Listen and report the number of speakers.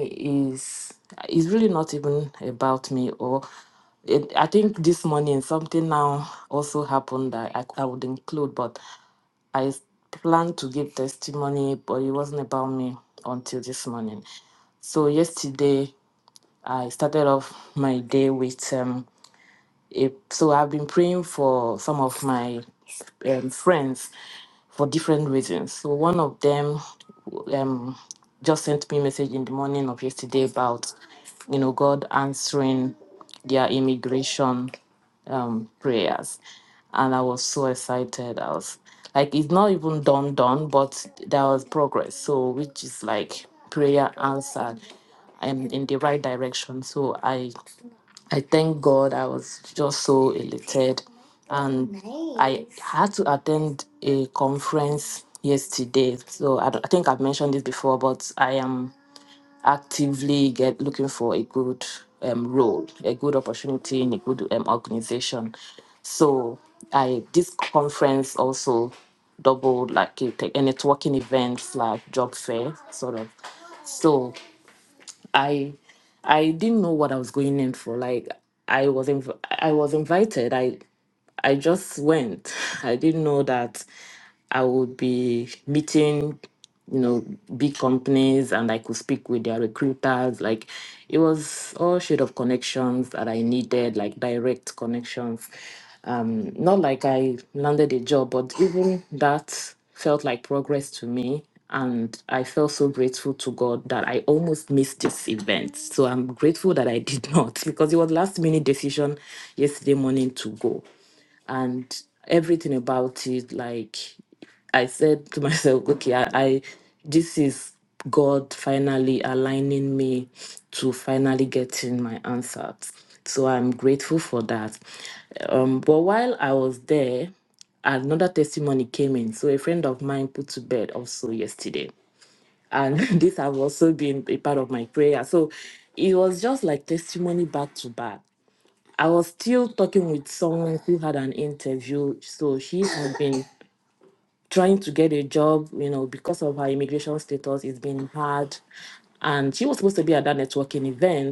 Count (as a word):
one